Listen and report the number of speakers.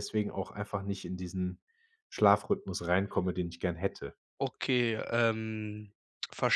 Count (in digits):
2